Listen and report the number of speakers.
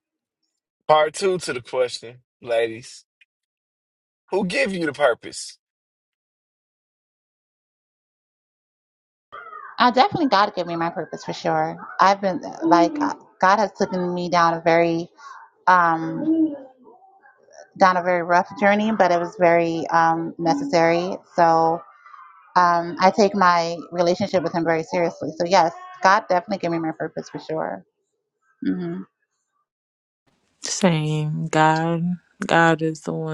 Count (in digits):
3